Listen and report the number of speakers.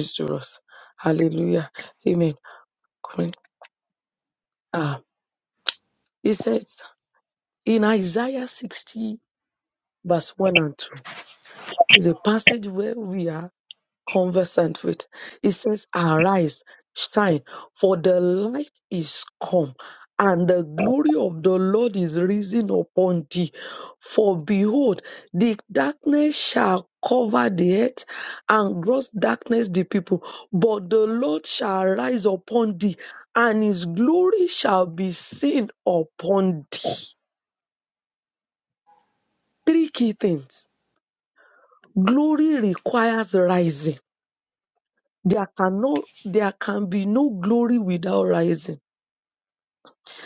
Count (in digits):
1